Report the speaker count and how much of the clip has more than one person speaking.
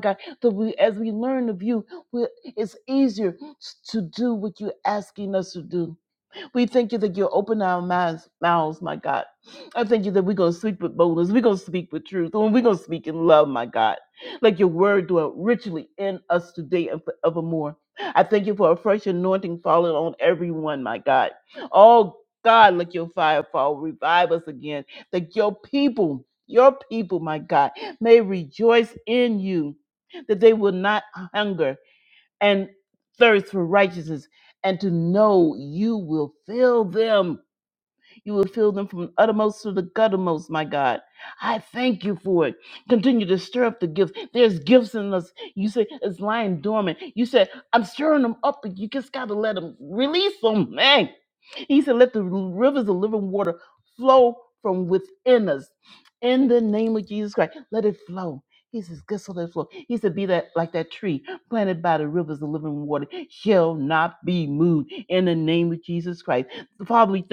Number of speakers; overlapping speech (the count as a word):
one, no overlap